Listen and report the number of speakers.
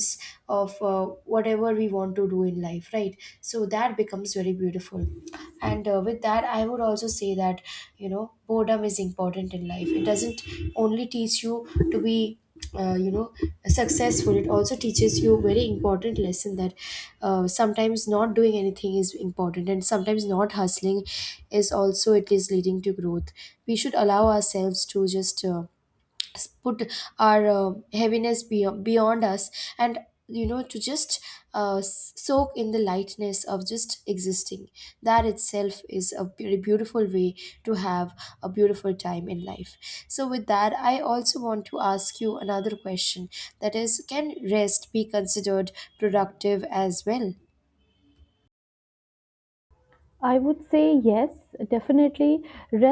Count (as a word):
two